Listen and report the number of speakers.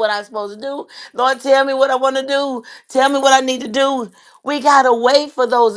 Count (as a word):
one